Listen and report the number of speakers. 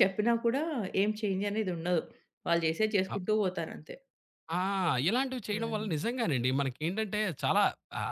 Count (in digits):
2